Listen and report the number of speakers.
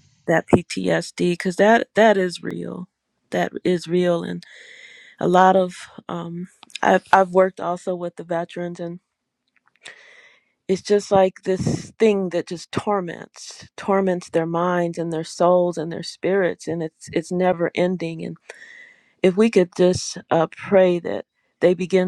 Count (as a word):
one